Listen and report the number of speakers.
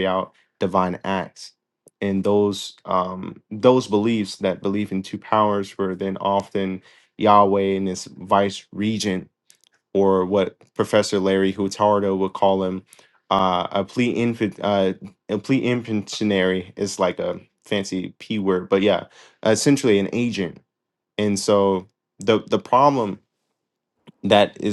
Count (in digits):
1